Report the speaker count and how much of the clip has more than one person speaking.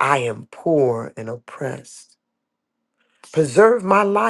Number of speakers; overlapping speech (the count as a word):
one, no overlap